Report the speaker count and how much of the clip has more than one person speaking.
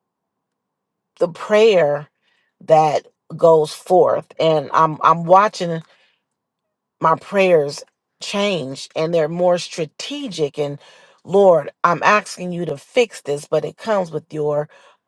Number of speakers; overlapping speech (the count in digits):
1, no overlap